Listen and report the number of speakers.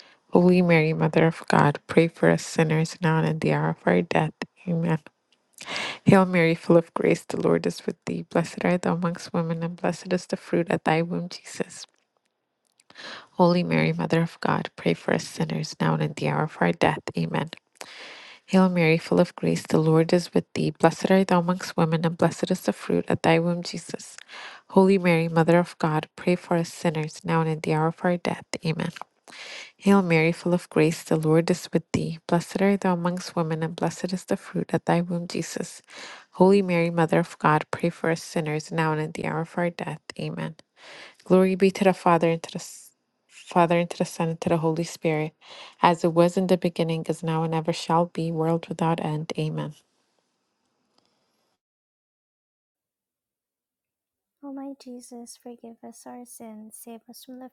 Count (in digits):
2